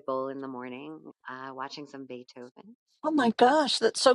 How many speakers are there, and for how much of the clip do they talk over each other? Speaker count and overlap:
two, no overlap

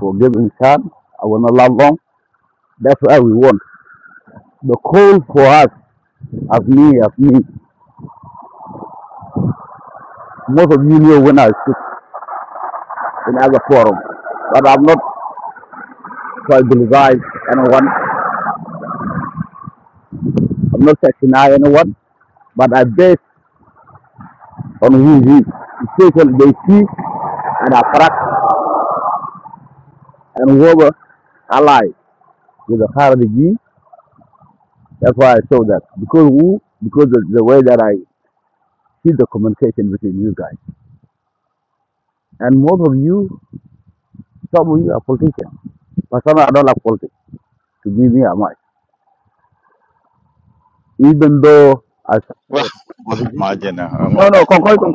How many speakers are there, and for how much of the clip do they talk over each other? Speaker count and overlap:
two, about 3%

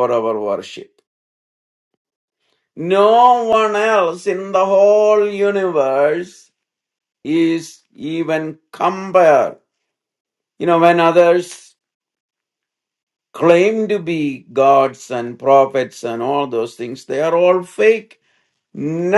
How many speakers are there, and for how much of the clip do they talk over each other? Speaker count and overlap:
one, no overlap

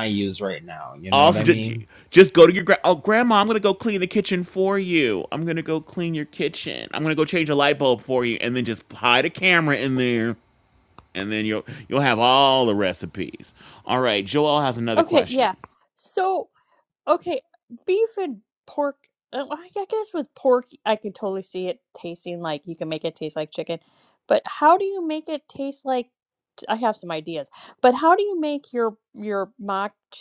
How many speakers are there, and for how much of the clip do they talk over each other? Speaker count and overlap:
three, about 4%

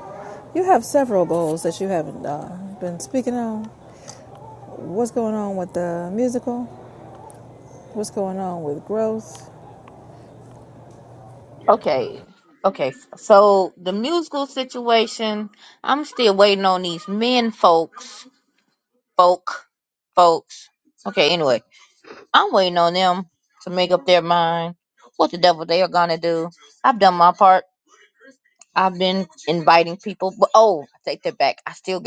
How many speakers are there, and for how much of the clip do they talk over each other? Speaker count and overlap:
two, no overlap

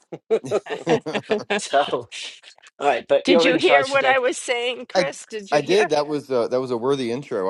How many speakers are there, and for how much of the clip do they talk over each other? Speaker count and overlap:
three, about 19%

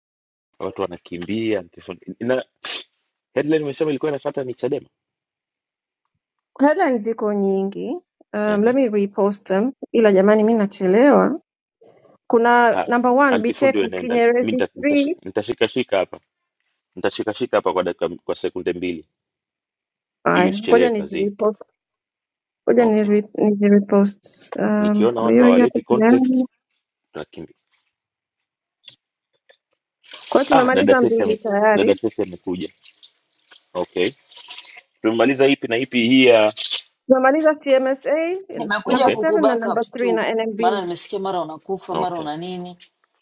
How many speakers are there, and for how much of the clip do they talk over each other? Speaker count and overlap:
three, about 19%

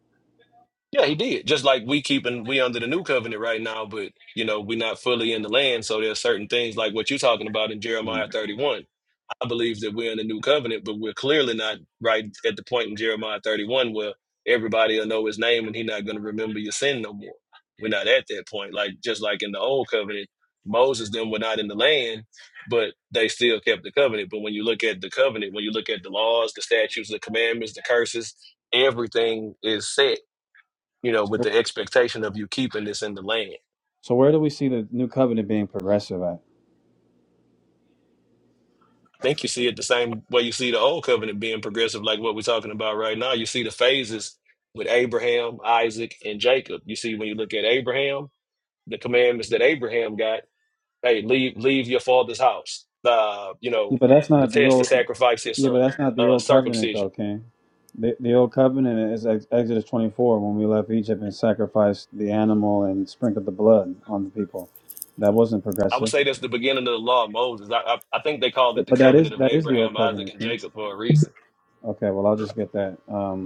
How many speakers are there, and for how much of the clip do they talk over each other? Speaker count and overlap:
two, about 6%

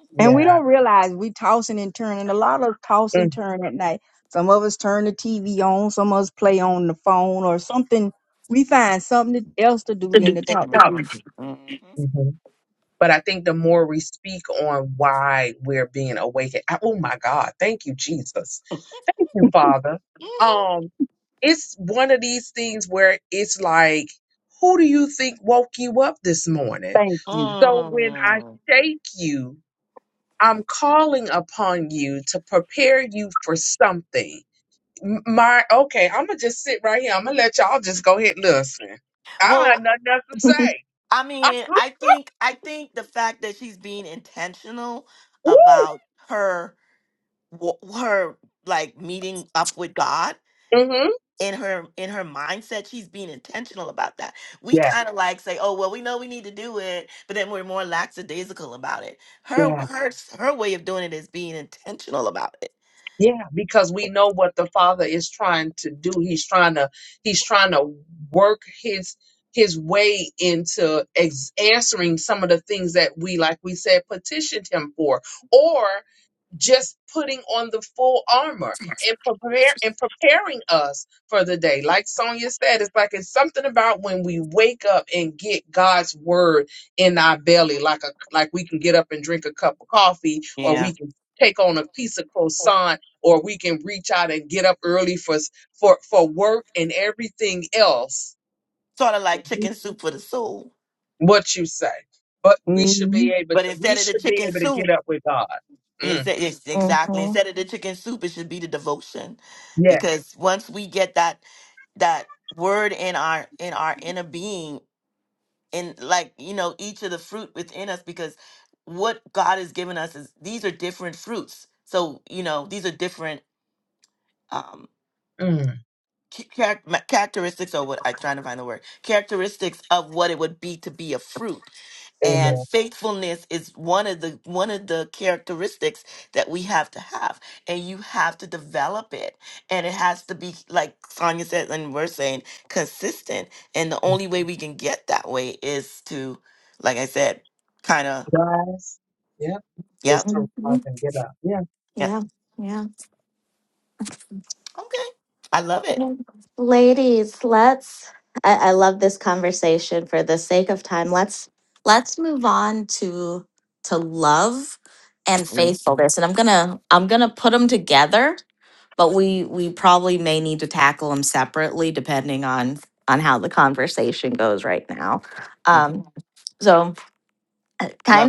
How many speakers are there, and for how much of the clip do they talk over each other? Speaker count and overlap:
four, about 5%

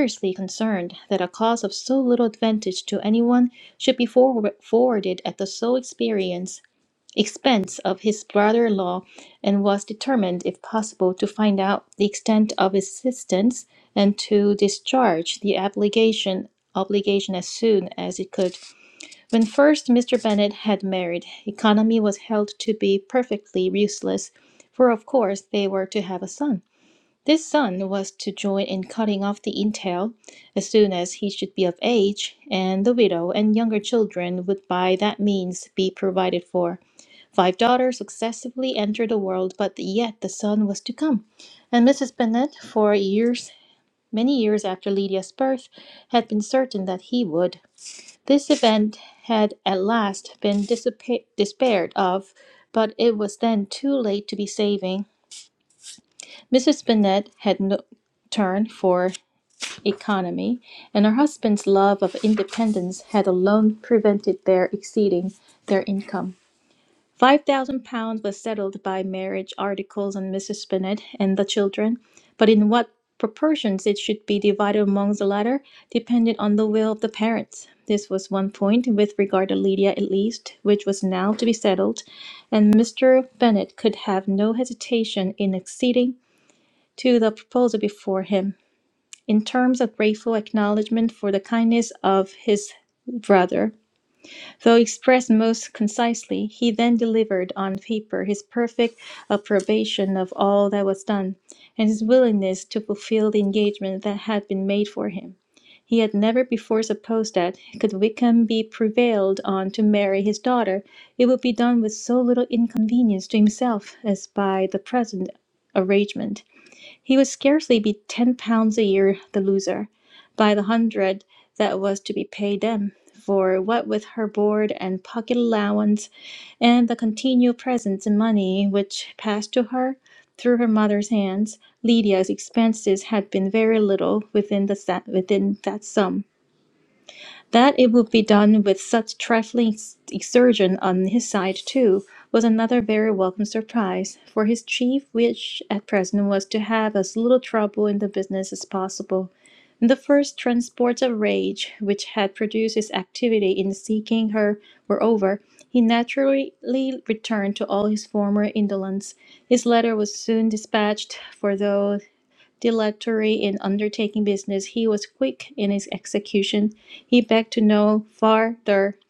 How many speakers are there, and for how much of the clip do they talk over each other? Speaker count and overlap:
one, no overlap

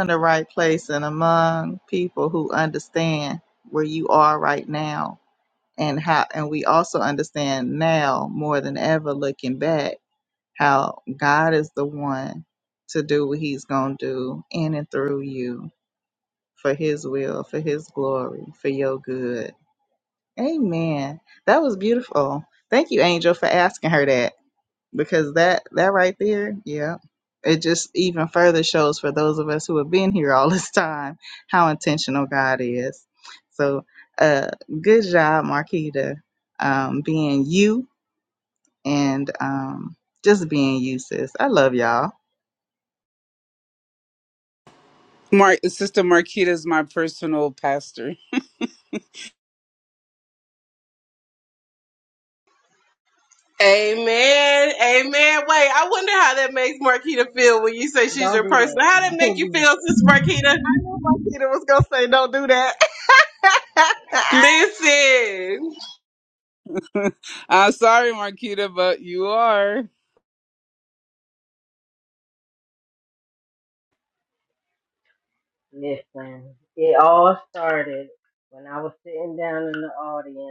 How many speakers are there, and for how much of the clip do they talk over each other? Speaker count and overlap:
four, about 2%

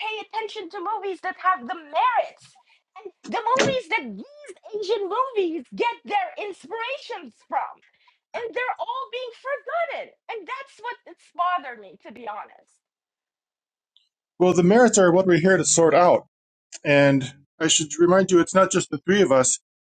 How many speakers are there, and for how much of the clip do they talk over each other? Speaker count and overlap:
two, no overlap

